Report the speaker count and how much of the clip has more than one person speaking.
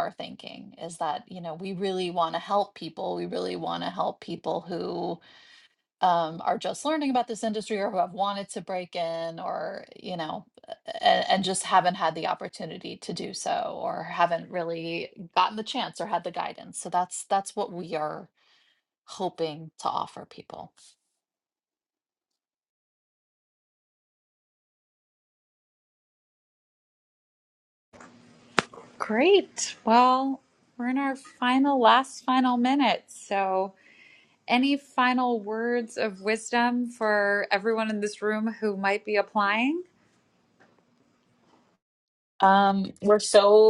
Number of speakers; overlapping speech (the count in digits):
3, no overlap